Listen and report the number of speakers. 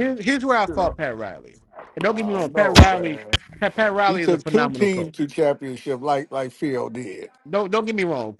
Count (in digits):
2